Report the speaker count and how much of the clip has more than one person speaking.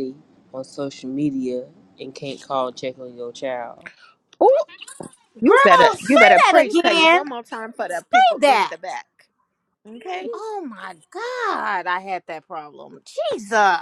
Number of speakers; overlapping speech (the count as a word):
three, about 19%